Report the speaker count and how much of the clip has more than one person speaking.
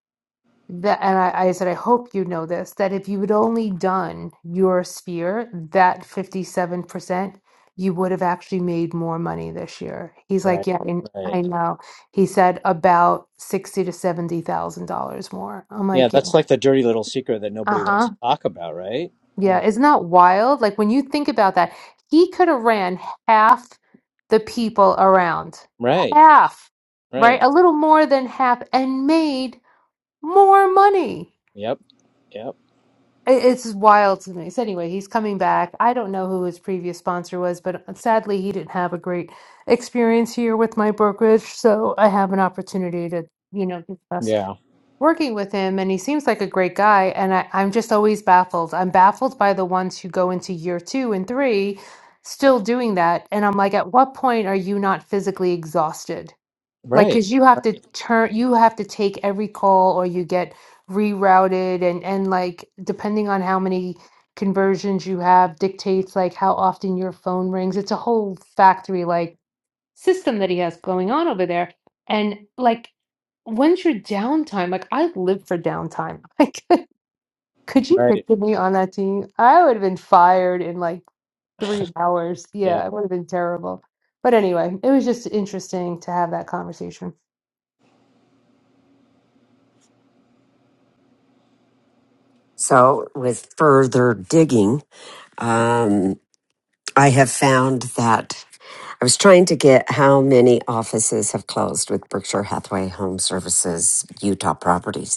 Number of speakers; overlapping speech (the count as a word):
three, about 3%